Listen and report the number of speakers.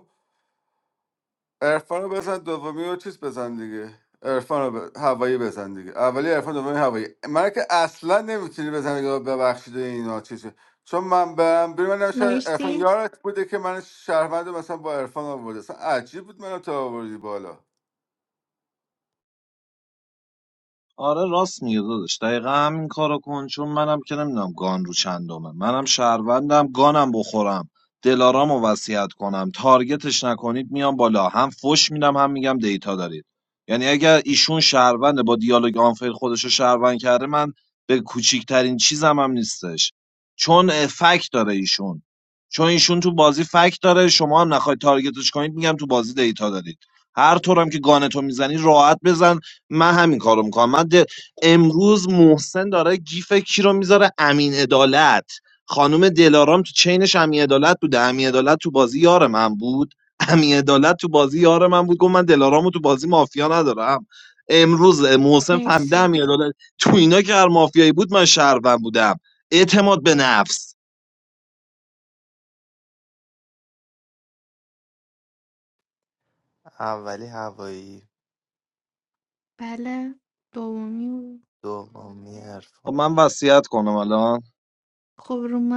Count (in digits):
4